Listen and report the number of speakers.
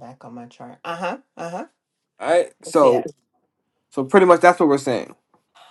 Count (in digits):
2